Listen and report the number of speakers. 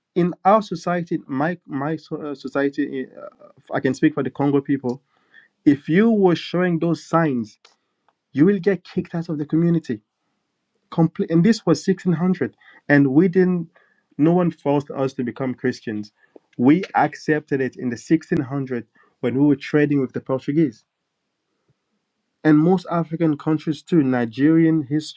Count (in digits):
1